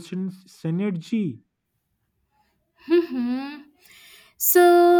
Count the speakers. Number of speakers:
2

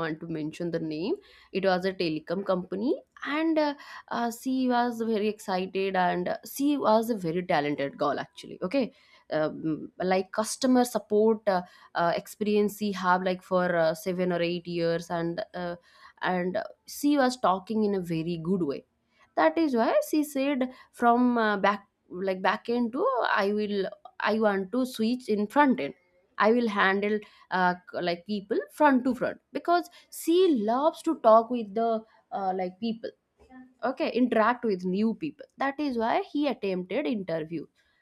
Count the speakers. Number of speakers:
1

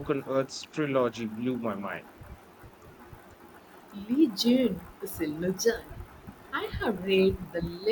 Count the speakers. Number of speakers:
2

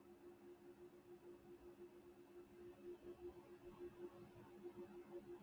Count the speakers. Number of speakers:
0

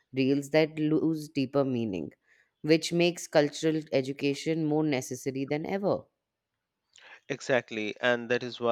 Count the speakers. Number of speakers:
2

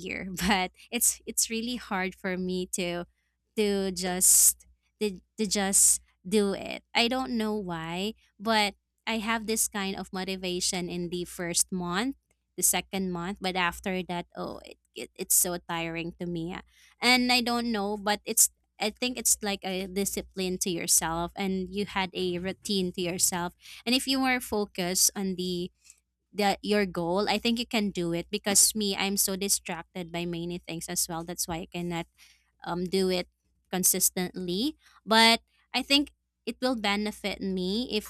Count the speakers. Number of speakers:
1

